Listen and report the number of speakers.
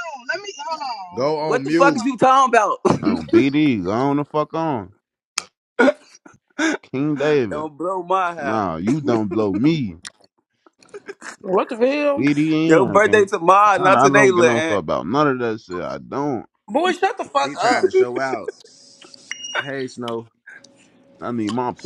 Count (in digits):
5